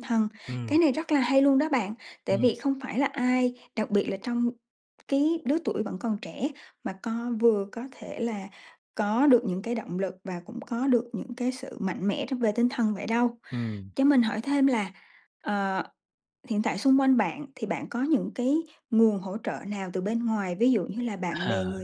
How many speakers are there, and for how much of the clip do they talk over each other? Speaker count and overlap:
2, about 4%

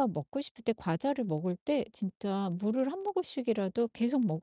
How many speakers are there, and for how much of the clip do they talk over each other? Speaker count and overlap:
1, no overlap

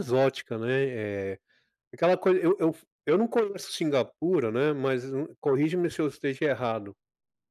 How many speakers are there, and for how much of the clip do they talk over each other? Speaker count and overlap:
1, no overlap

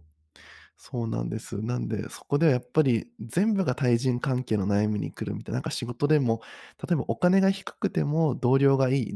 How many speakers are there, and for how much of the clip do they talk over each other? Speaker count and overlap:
1, no overlap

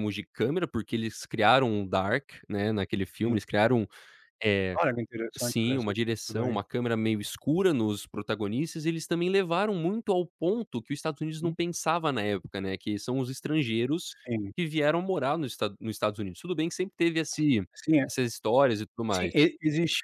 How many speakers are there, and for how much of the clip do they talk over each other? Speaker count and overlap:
2, about 5%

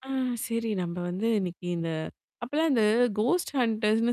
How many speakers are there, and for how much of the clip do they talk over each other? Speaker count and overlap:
1, no overlap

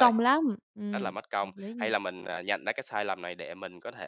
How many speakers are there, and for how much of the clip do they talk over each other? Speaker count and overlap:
2, about 19%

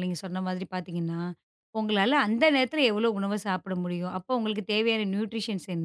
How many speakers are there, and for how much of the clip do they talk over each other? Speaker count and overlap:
1, no overlap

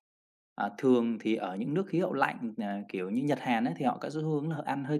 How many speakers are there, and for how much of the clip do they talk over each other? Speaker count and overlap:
1, no overlap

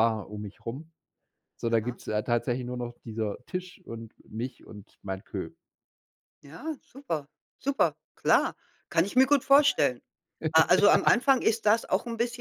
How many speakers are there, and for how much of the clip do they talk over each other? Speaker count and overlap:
2, about 2%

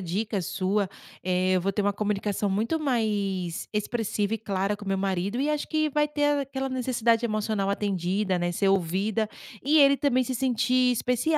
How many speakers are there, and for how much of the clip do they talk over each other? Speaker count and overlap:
1, no overlap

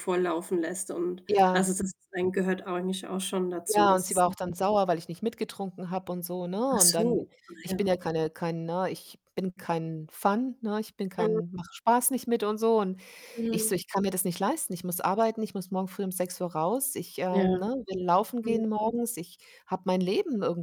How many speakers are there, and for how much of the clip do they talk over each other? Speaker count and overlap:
2, about 13%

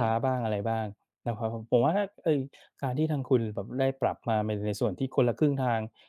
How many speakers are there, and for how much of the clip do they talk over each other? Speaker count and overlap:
1, no overlap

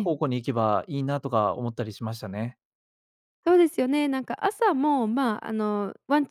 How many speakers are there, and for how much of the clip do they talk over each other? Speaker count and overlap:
2, about 1%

